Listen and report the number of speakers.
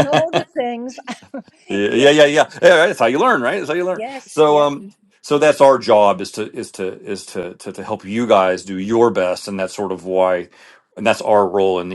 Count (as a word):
two